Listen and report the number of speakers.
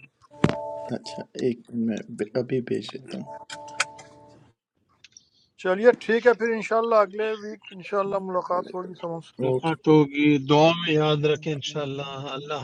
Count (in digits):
3